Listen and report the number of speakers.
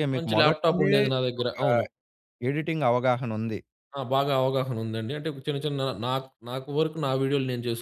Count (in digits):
2